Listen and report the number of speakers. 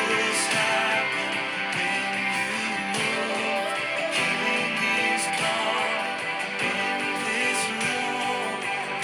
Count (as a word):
one